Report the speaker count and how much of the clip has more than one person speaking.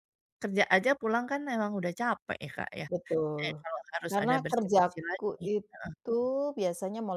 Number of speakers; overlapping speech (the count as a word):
two, about 24%